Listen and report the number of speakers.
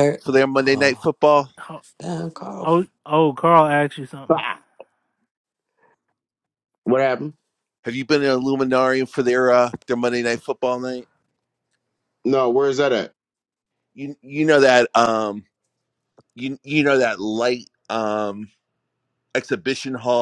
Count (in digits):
4